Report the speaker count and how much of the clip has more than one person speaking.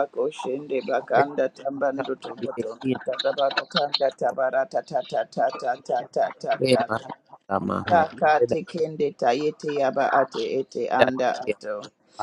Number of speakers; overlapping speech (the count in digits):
2, about 10%